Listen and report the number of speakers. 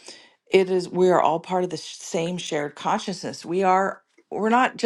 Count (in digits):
1